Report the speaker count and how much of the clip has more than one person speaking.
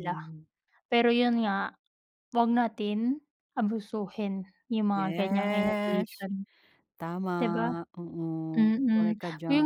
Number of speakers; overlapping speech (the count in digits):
2, about 21%